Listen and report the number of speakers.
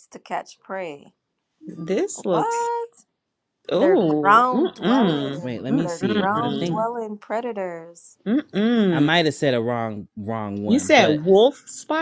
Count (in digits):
3